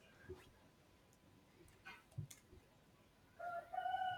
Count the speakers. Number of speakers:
0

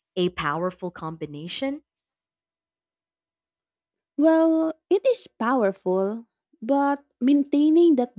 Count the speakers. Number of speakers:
2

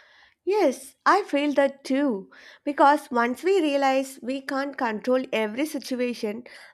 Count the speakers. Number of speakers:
1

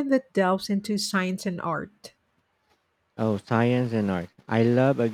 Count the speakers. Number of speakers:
2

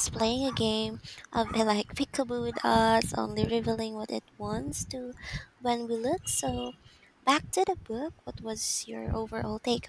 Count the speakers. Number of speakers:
1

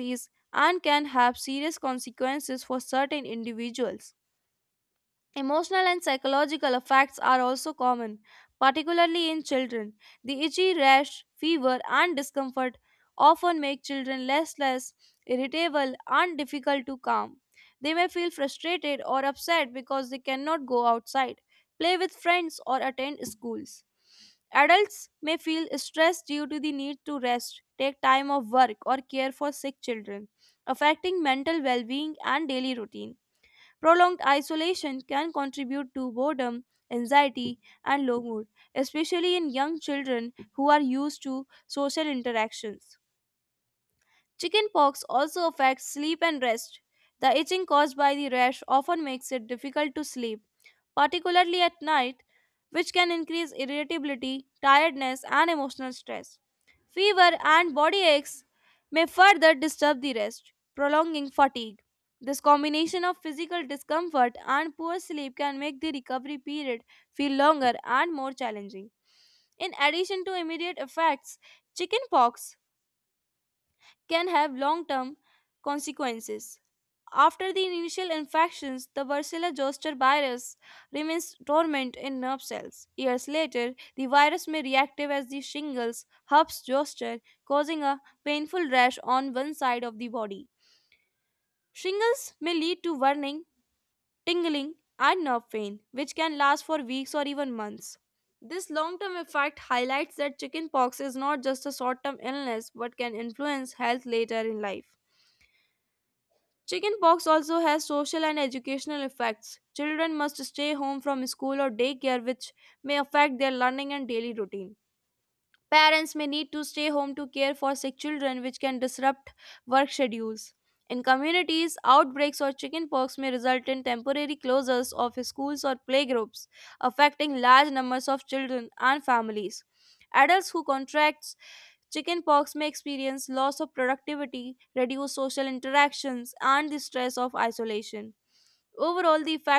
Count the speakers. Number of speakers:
1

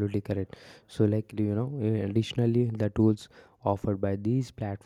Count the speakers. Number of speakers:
1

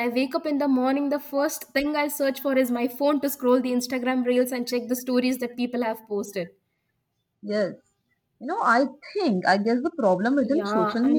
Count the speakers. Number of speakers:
2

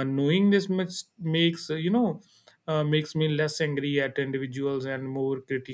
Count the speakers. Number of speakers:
1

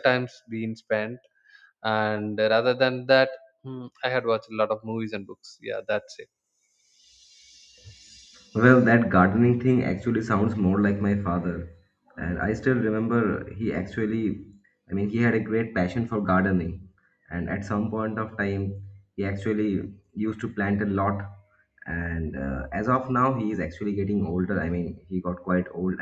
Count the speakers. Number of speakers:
2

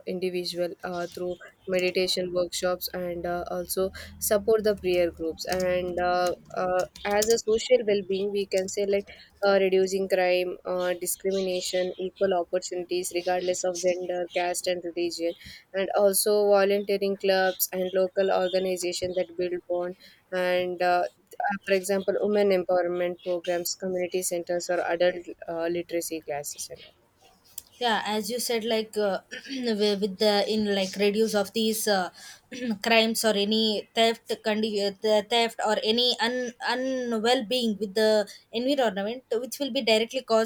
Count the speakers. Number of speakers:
2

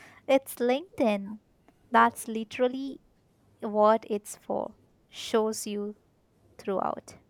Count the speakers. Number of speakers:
1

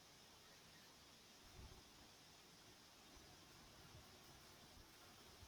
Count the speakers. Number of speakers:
0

